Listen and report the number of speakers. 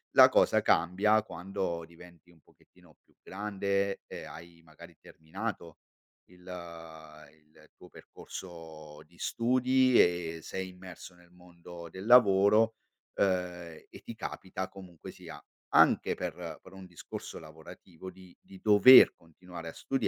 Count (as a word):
one